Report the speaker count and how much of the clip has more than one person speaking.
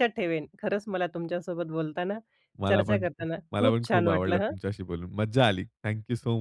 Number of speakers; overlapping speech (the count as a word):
two, about 22%